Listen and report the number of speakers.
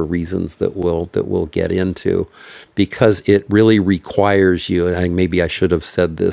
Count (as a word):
one